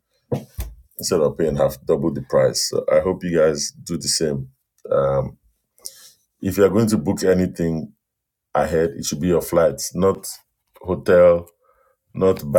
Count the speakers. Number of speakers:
1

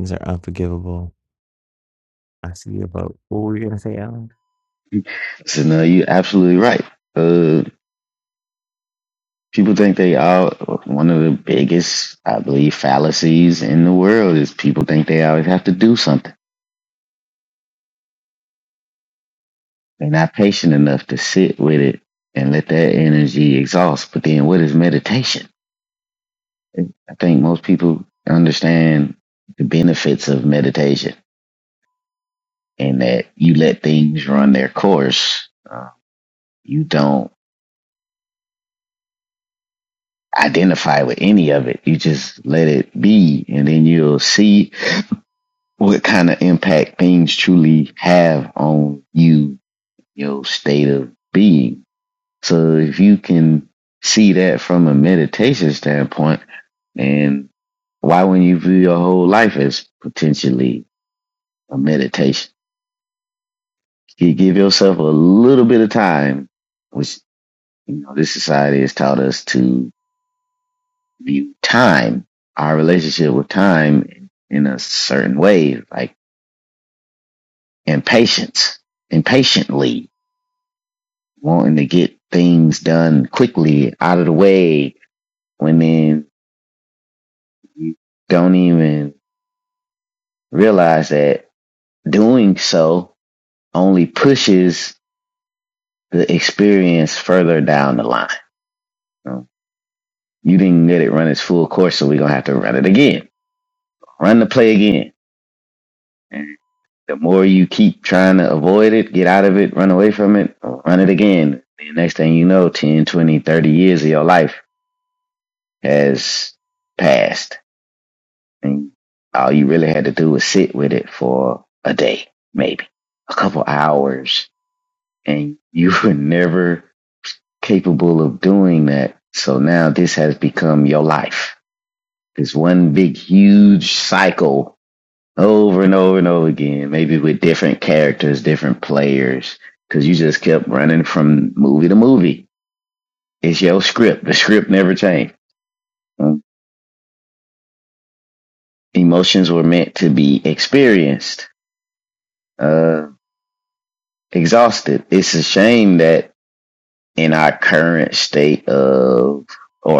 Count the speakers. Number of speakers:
2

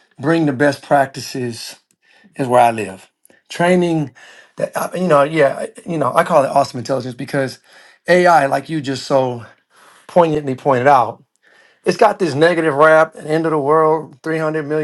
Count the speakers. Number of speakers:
1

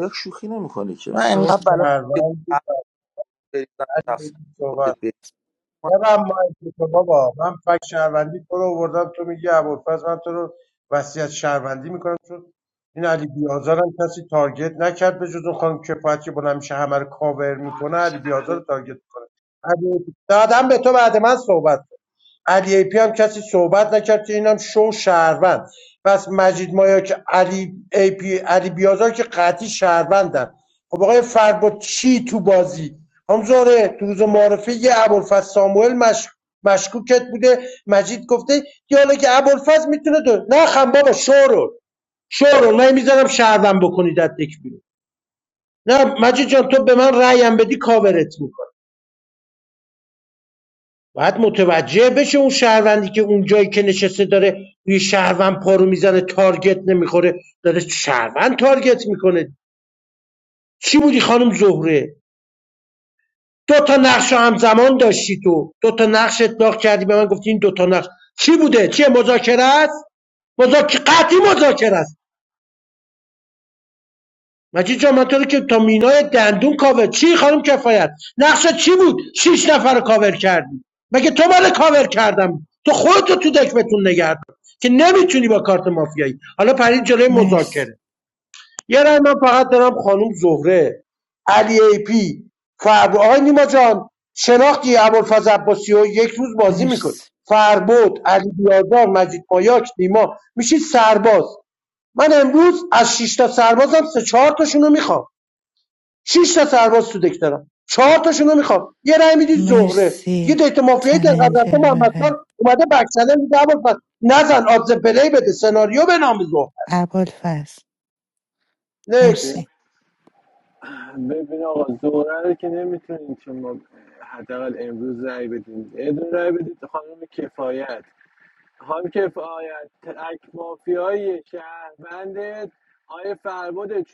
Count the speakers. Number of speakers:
4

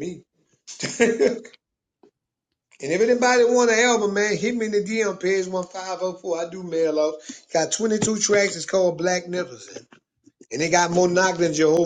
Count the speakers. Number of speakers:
1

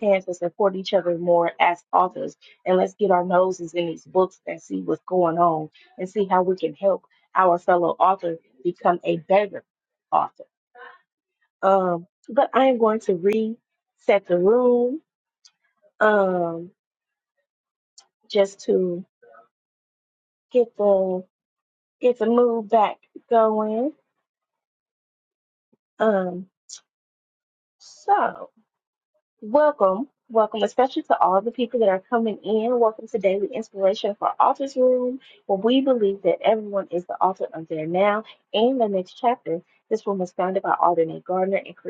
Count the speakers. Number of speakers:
1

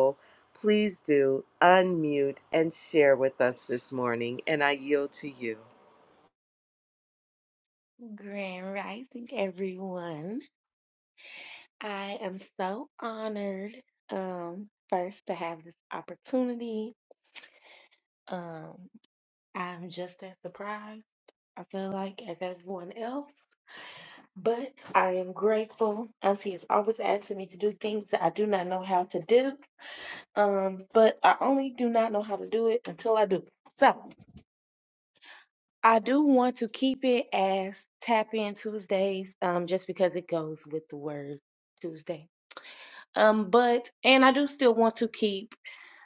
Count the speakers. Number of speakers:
2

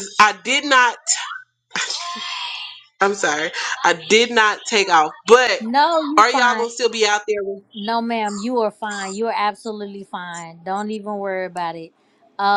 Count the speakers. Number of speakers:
2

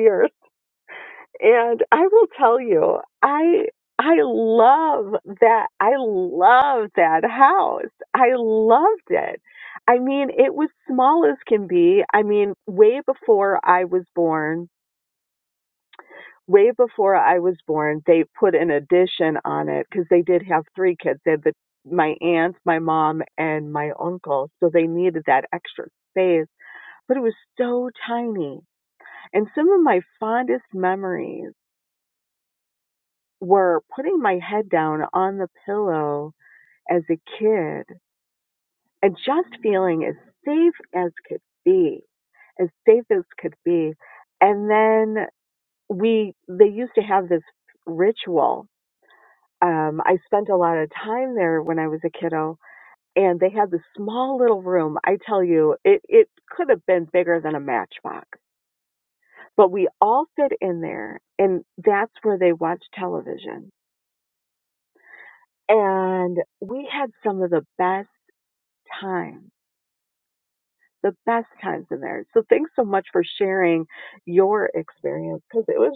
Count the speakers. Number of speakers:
1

